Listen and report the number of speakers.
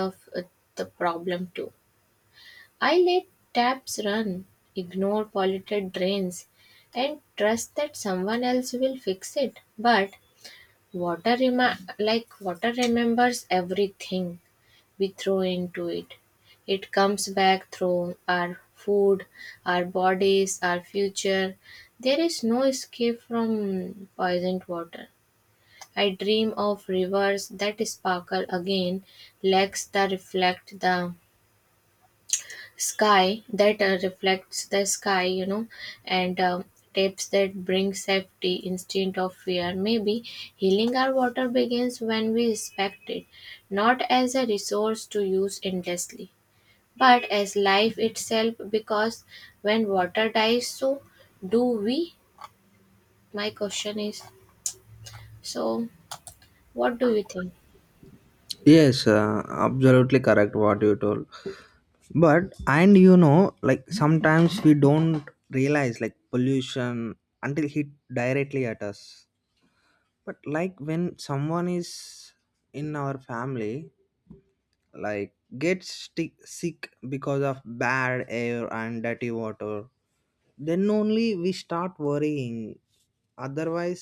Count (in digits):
2